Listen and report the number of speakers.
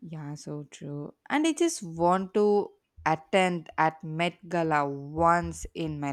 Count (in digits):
1